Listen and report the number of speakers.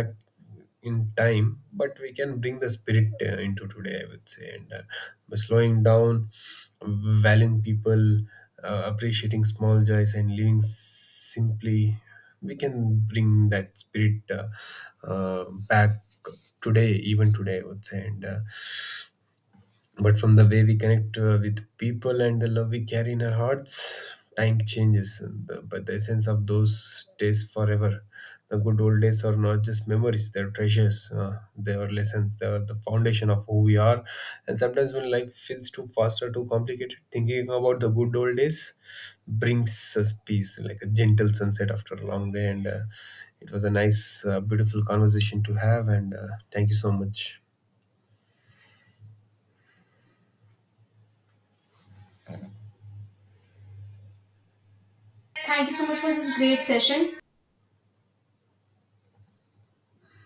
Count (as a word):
two